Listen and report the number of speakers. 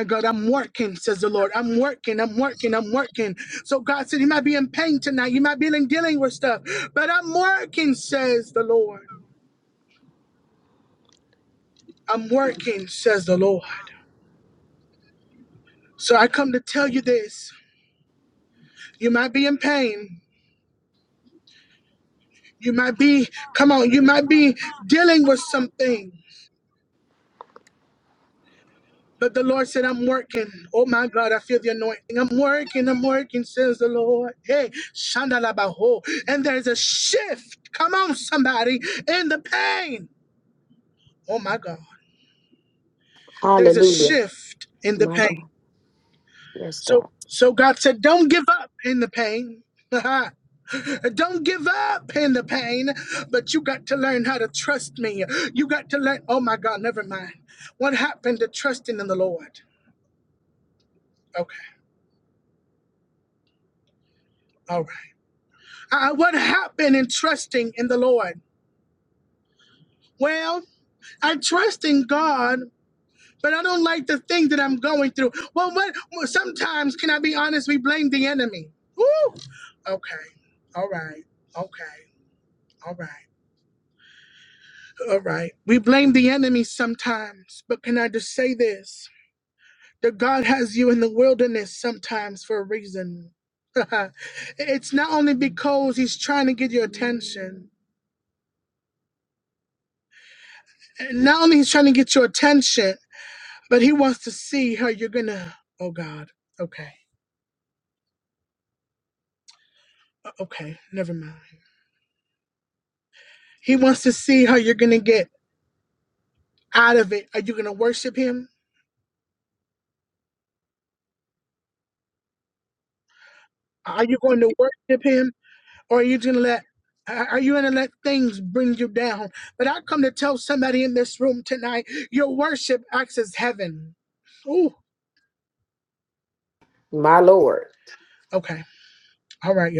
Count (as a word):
two